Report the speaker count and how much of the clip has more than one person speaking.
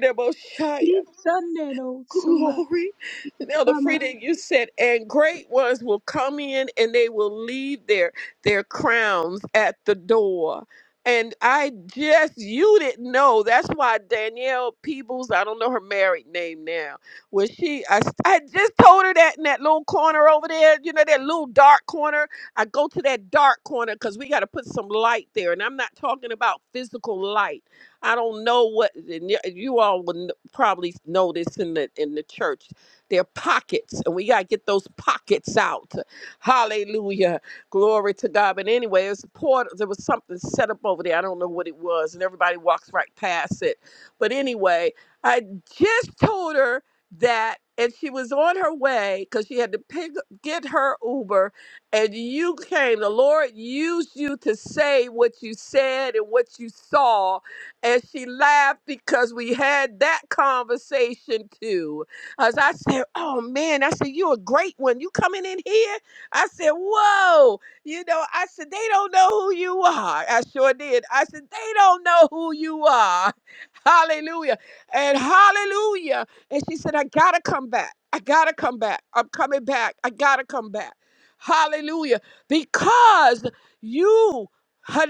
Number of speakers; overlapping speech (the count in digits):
2, about 1%